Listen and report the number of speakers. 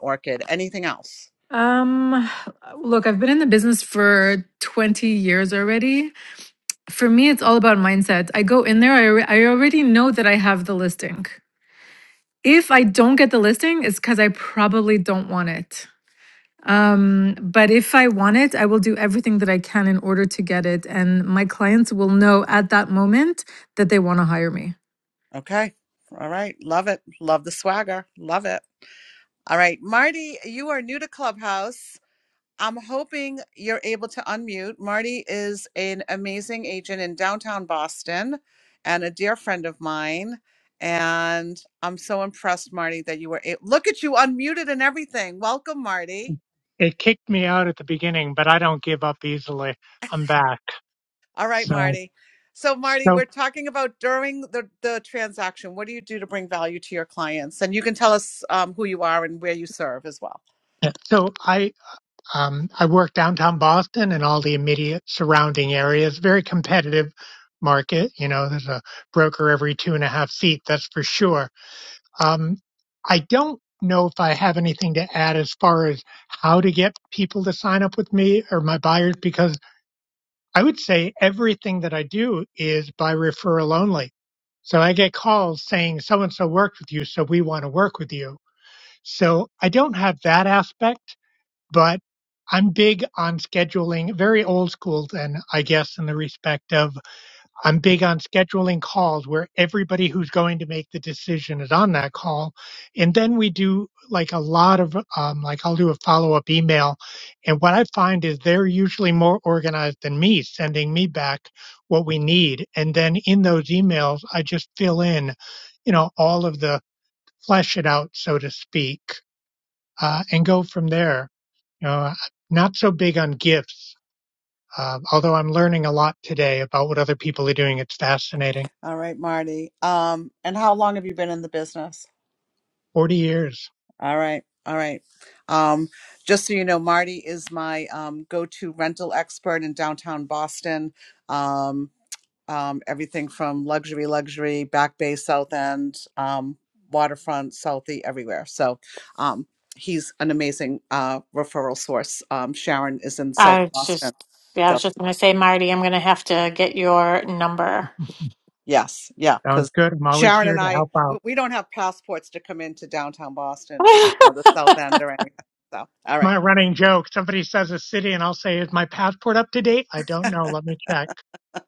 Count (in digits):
4